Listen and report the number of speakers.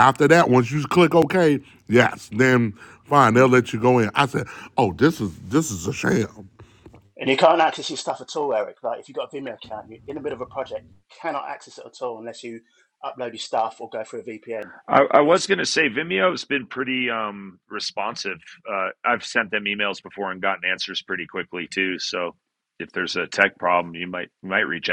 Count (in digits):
3